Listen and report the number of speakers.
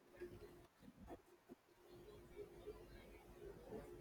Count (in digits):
0